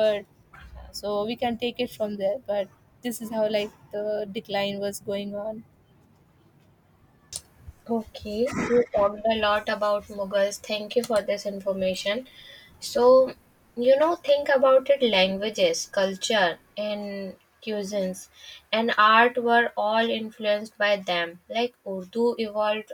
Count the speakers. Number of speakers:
2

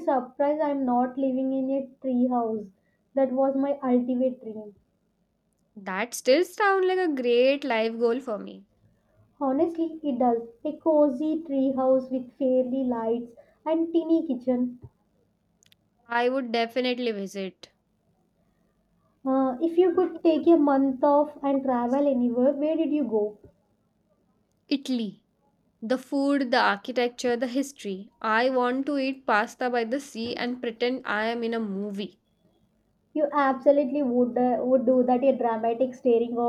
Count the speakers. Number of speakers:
2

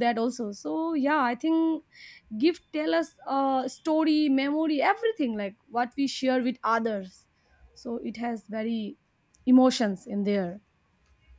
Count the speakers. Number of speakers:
1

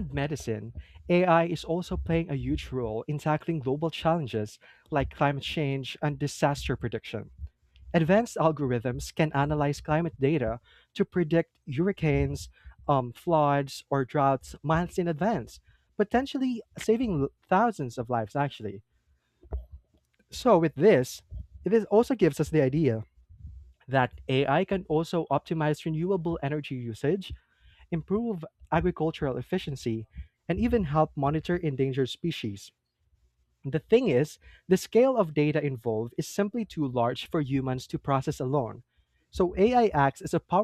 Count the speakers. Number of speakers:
1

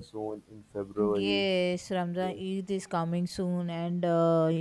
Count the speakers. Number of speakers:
2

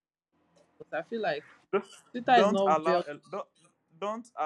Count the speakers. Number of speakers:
2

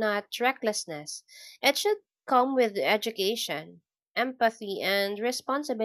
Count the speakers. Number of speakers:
1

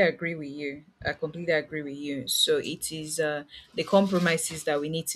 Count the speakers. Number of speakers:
1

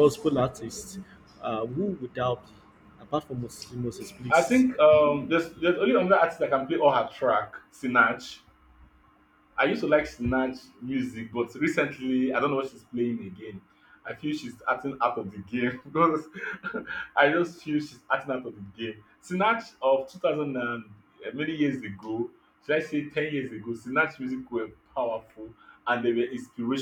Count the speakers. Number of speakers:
2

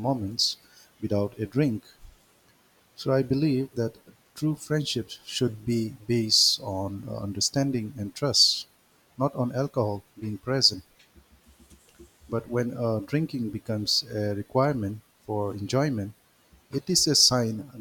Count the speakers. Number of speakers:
1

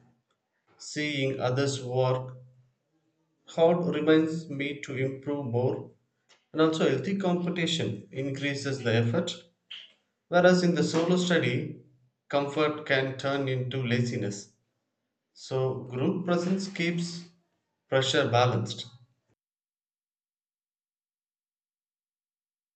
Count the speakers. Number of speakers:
1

